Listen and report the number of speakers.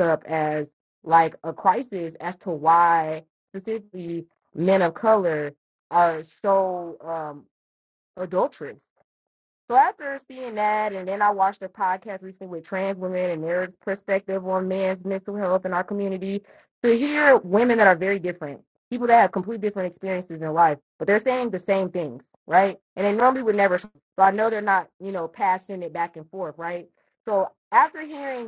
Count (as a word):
one